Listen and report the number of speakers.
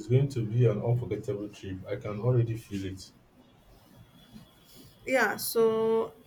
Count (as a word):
two